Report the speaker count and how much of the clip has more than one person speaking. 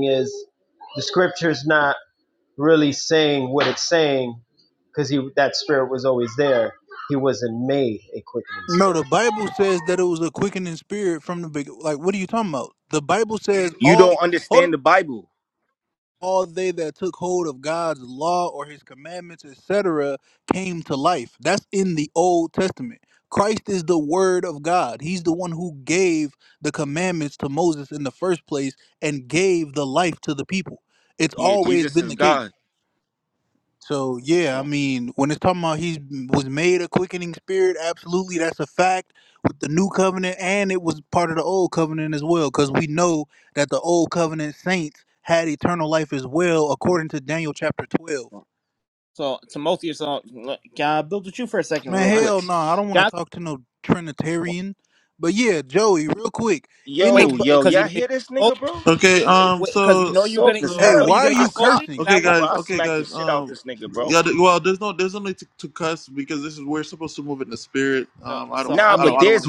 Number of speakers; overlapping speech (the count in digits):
5, about 14%